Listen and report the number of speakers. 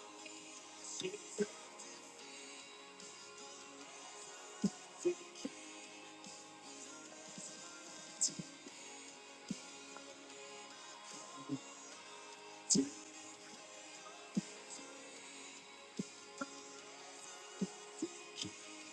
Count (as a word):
zero